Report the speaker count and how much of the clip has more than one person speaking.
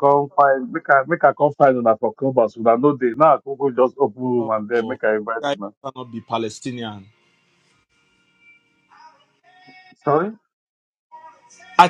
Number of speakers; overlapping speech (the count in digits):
2, about 7%